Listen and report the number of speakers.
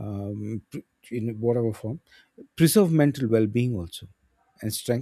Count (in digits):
1